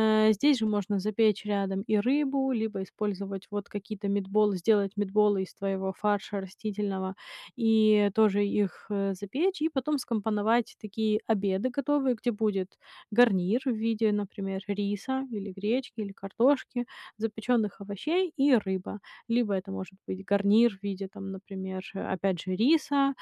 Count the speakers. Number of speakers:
one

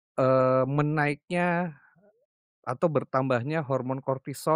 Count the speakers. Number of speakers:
one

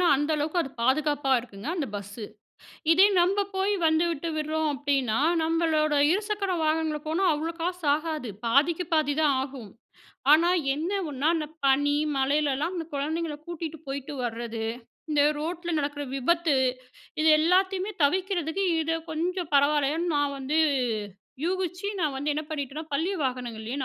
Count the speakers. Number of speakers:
one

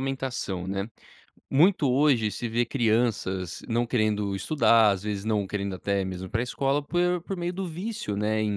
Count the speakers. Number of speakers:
one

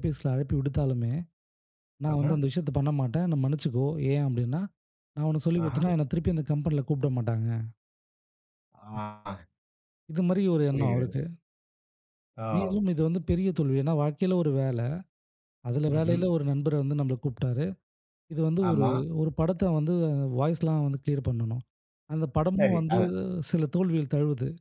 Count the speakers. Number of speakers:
two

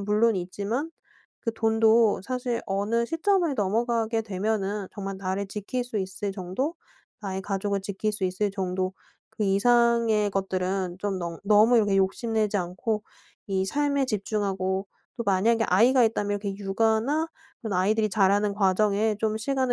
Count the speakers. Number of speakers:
one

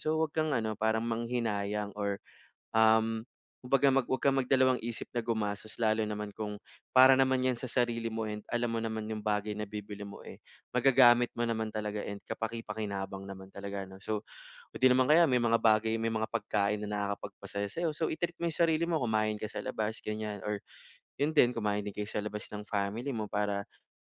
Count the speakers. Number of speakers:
one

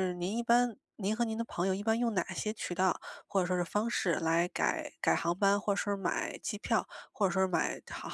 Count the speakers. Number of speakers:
one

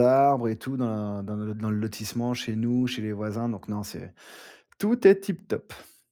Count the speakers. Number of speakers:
one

